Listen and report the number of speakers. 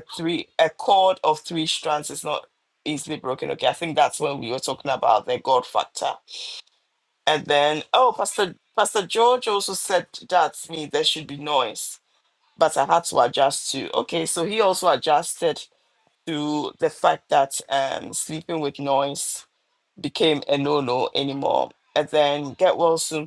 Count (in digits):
1